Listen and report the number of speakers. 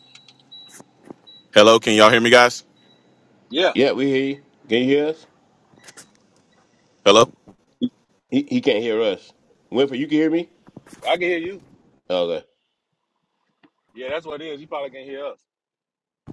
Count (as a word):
three